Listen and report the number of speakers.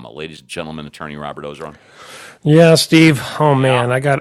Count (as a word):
two